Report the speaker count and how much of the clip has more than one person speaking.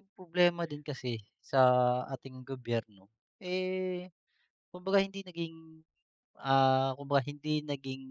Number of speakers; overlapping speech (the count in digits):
1, no overlap